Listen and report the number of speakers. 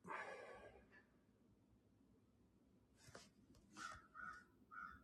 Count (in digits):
0